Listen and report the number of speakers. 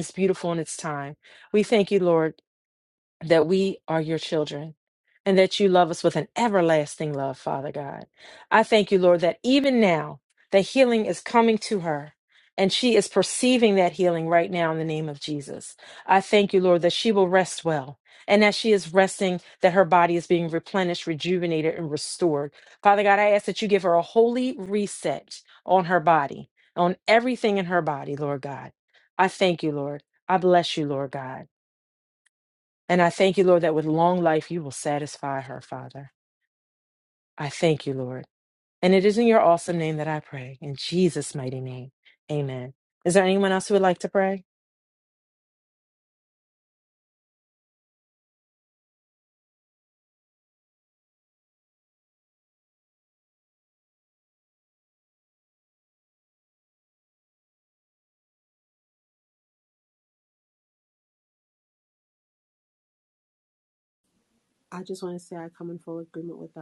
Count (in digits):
2